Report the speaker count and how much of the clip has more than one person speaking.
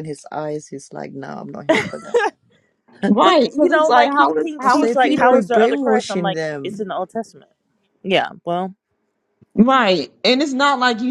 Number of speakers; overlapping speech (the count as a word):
three, about 33%